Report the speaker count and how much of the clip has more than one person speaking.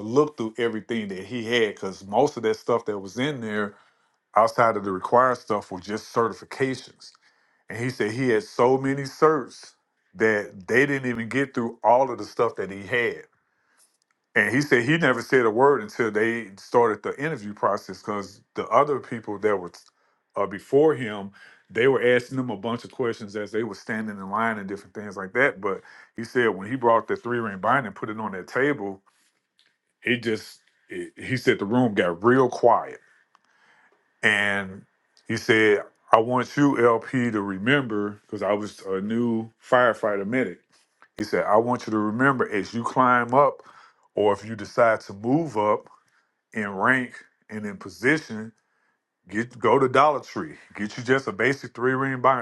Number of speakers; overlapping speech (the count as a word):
one, no overlap